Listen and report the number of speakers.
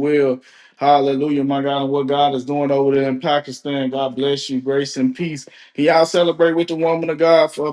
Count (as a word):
one